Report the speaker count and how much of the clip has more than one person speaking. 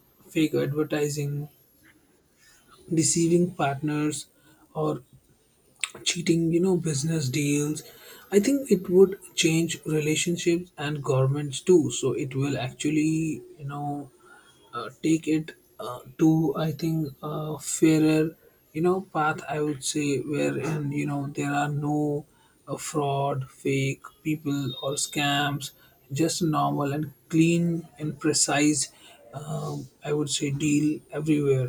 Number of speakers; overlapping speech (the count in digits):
1, no overlap